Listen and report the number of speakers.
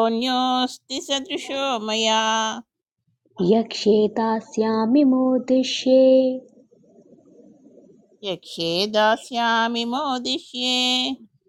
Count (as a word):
two